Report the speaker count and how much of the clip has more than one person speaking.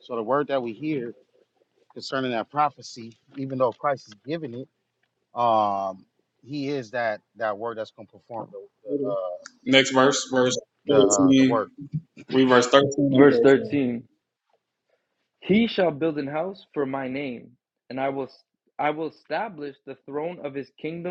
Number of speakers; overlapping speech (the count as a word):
three, about 5%